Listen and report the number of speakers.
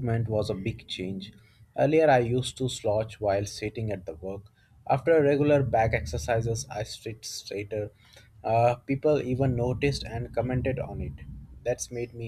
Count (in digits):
1